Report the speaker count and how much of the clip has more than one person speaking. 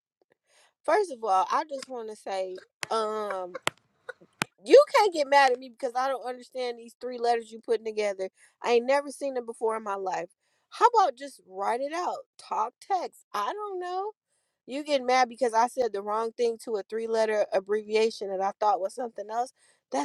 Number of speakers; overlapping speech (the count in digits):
1, no overlap